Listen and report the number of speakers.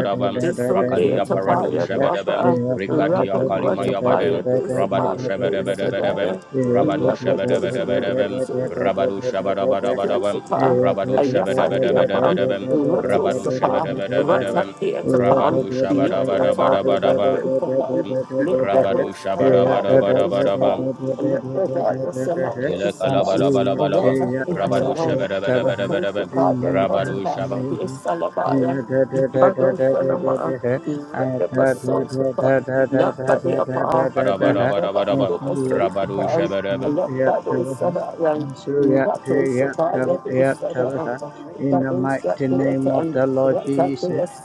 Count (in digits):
3